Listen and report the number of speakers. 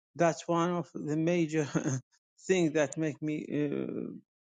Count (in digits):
1